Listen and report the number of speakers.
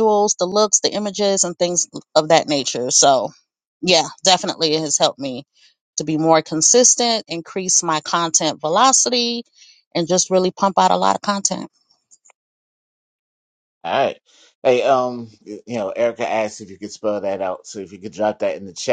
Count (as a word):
two